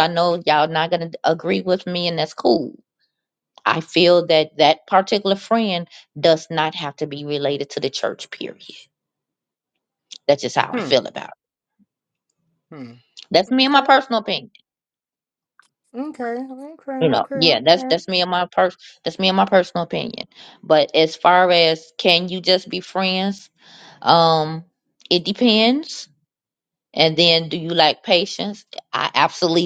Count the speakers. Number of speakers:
2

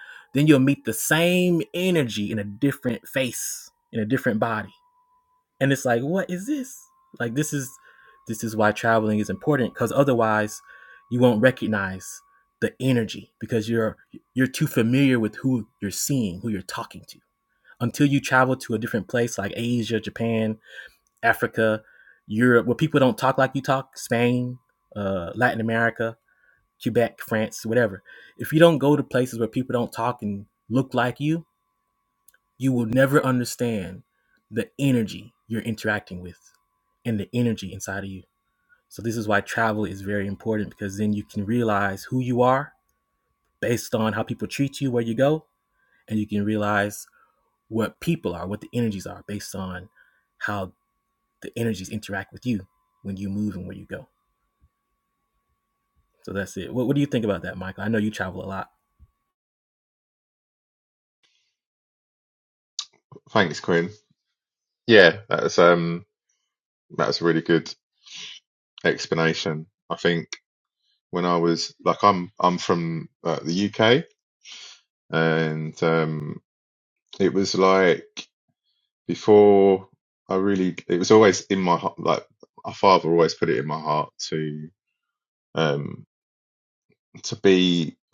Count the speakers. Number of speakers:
2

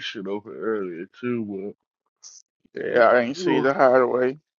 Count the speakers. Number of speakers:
2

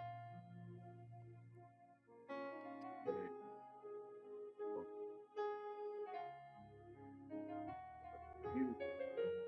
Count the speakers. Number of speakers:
0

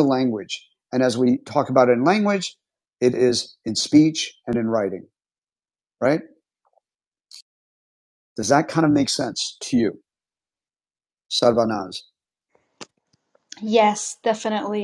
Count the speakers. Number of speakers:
2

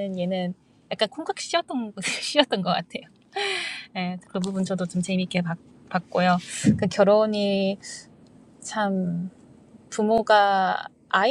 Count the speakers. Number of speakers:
1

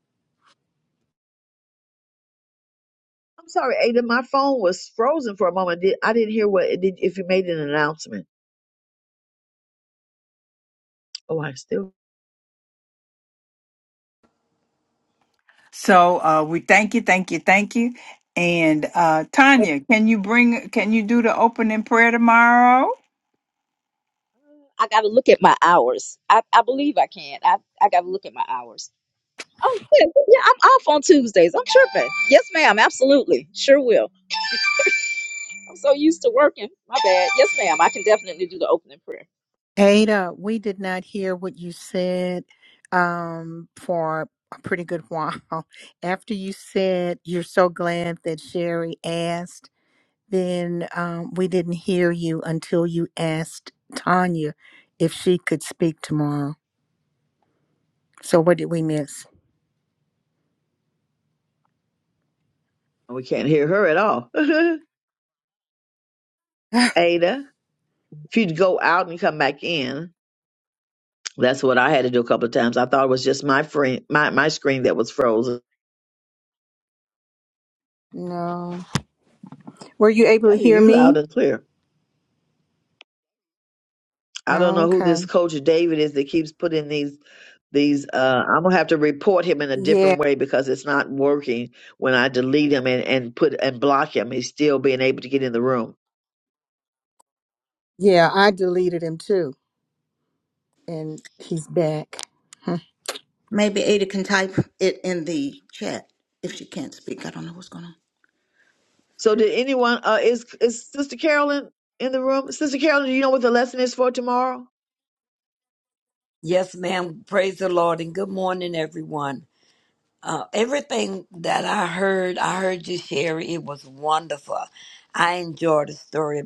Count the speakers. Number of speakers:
6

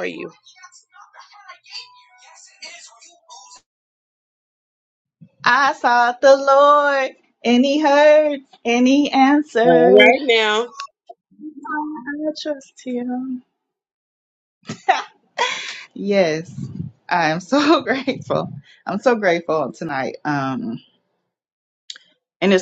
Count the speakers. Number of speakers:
2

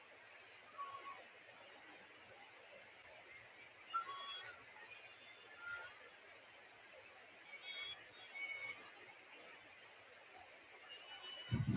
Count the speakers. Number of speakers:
0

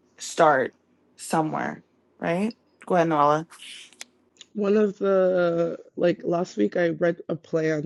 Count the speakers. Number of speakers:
2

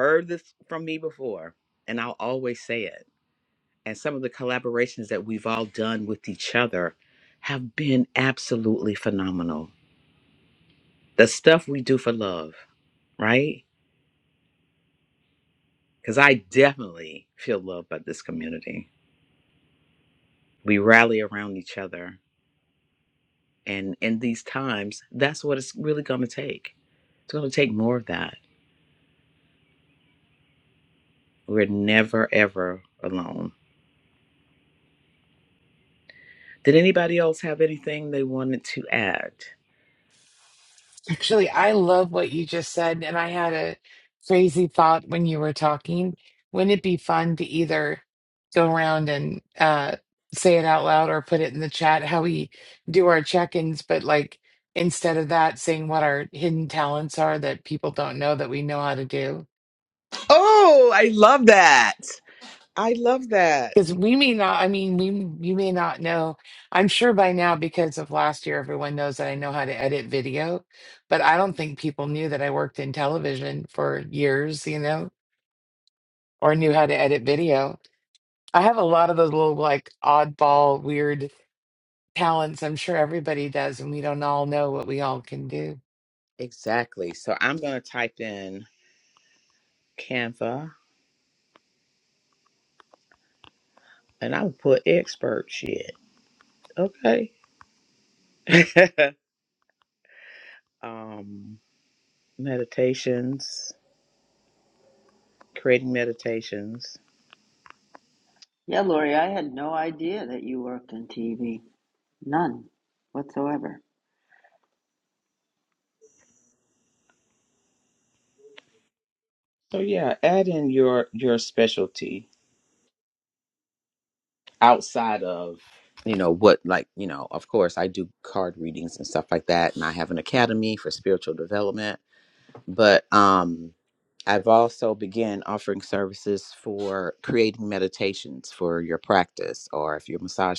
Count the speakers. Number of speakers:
3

